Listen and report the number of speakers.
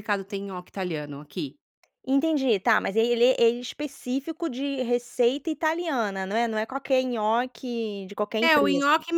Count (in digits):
2